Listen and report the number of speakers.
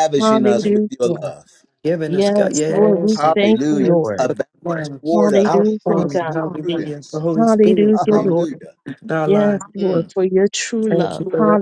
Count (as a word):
three